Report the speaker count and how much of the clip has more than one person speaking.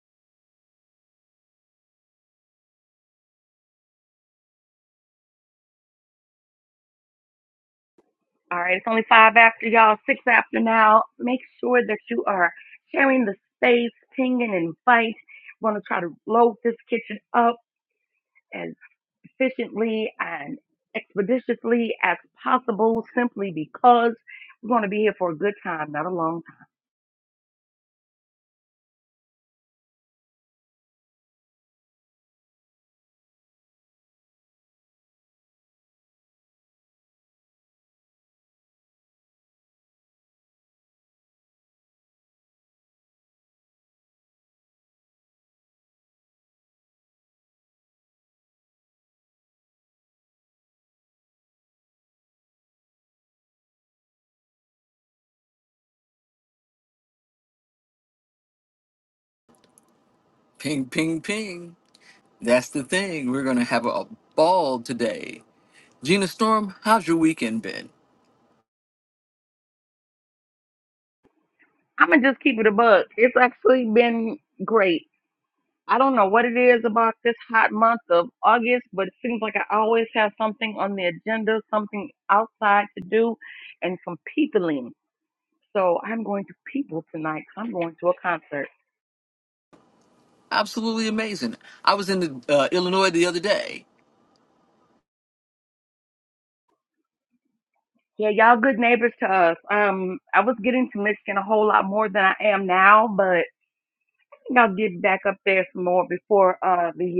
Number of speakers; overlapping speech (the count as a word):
two, no overlap